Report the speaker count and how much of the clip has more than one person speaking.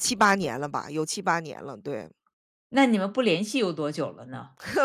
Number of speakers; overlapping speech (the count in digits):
2, no overlap